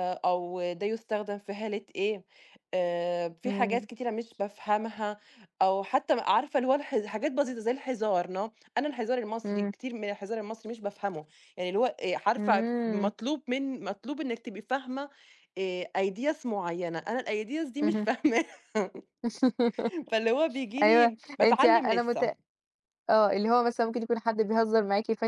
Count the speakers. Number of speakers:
two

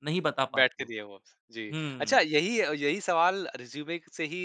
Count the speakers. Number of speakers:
two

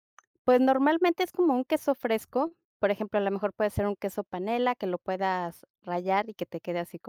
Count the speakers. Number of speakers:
one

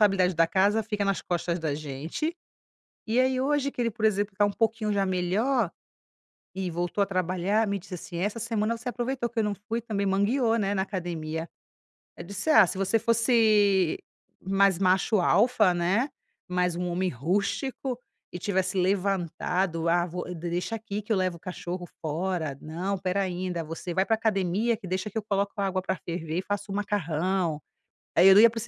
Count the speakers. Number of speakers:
one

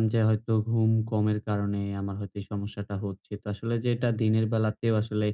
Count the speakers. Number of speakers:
one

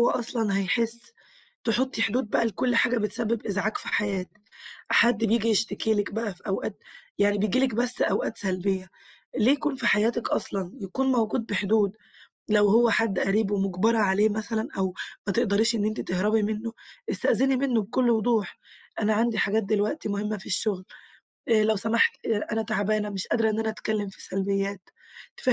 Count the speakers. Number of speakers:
one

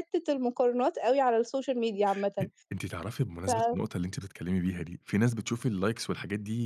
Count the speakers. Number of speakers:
two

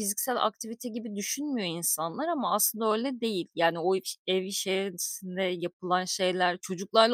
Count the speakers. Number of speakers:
one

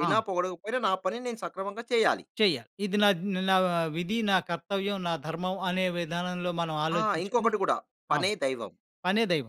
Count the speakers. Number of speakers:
two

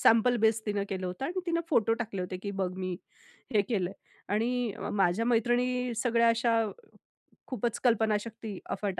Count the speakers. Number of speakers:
one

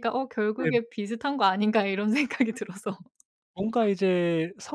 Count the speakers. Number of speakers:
two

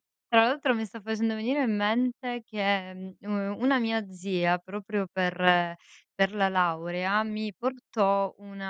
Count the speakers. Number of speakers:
one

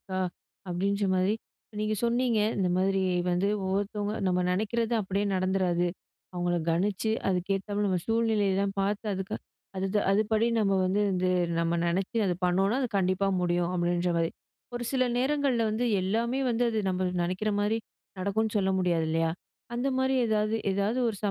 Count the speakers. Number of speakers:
one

